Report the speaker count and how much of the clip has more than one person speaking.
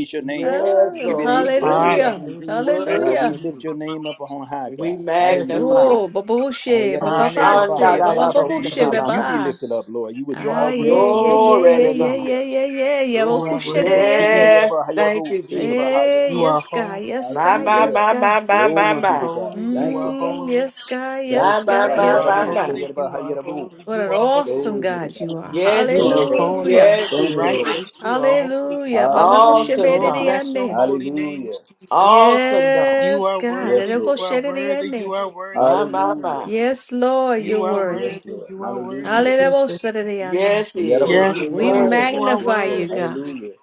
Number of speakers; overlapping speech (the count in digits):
4, about 79%